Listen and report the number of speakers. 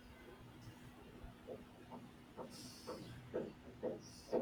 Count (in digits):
0